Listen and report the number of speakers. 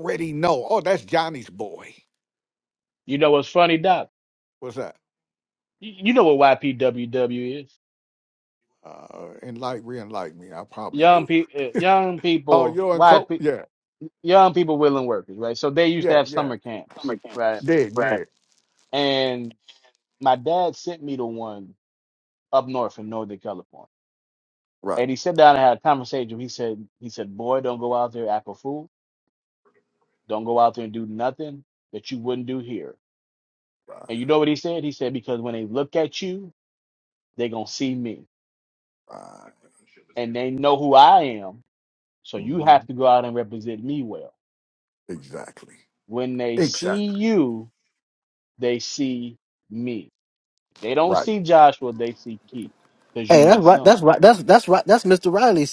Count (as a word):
three